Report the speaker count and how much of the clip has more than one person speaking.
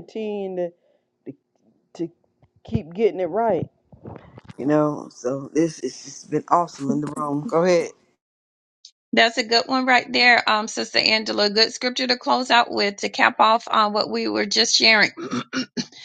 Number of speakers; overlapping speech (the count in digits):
2, no overlap